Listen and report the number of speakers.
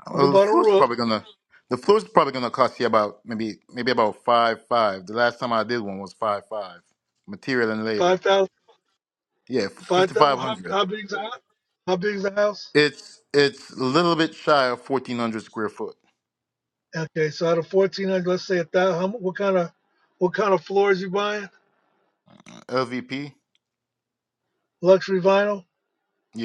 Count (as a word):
two